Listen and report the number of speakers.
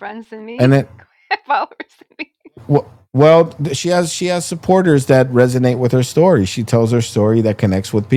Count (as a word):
two